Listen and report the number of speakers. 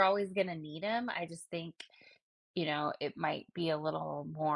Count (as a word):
one